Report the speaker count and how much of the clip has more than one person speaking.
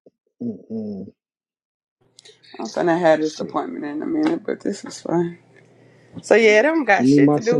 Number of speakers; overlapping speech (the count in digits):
2, about 13%